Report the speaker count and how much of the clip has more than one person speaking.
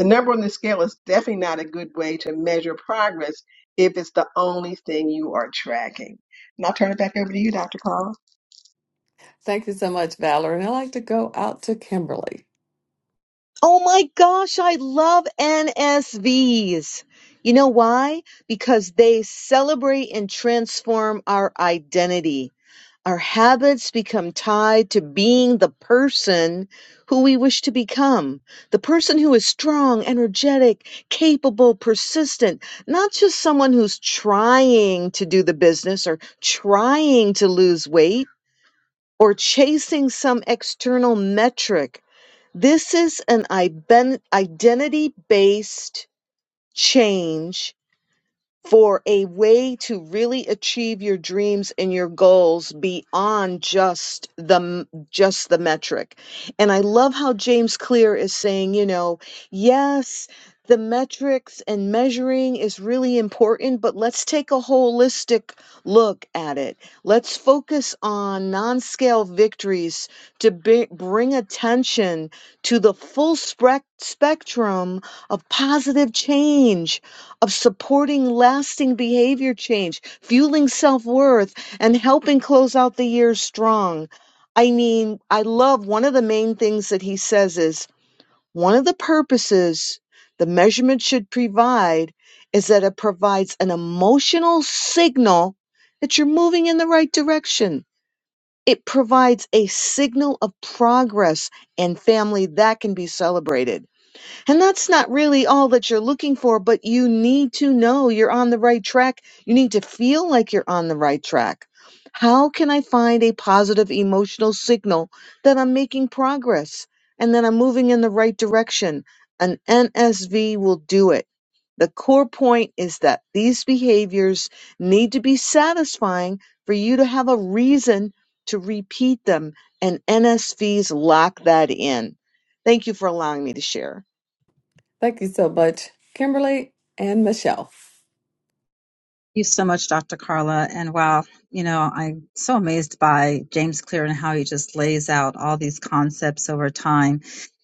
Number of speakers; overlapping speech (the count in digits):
4, no overlap